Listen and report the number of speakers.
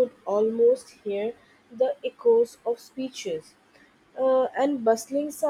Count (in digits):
1